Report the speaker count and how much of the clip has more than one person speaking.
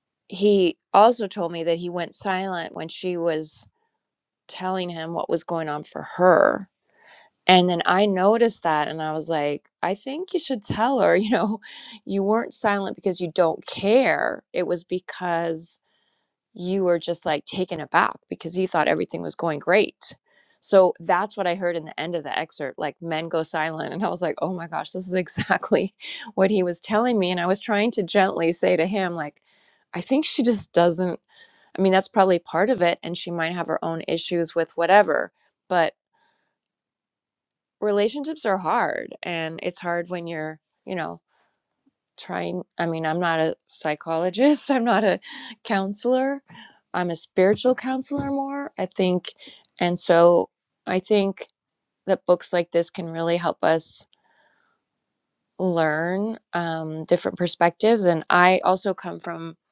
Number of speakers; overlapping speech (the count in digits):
1, no overlap